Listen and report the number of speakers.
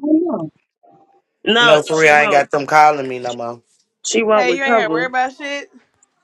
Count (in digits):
3